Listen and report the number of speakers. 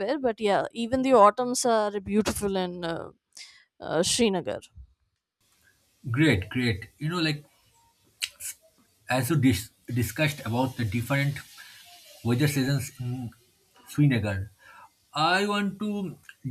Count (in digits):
2